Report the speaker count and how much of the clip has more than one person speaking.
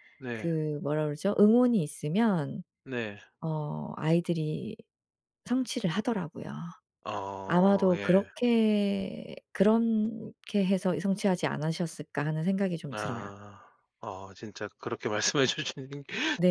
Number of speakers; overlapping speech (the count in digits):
2, about 9%